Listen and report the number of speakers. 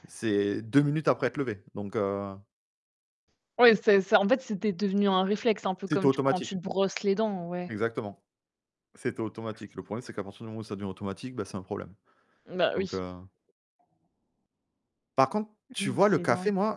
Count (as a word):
two